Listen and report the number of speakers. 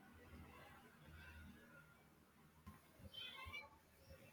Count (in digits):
0